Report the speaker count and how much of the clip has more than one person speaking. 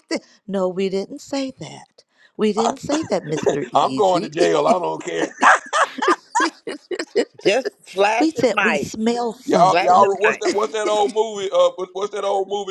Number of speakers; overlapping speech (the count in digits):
3, about 17%